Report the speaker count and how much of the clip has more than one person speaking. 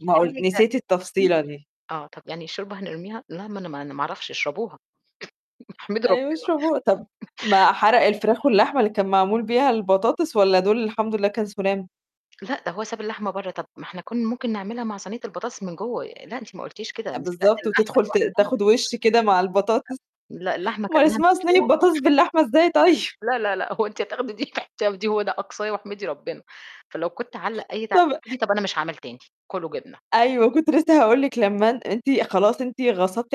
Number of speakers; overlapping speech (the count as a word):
two, about 9%